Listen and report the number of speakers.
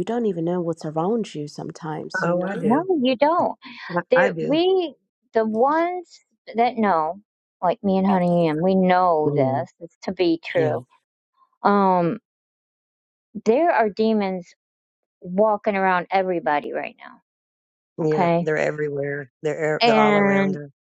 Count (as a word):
three